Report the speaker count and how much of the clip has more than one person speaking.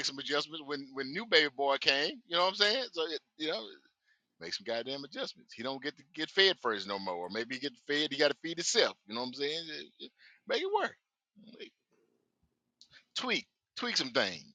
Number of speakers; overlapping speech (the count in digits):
1, no overlap